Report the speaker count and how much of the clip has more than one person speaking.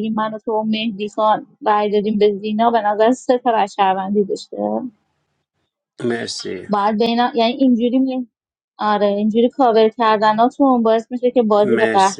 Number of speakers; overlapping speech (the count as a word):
two, about 5%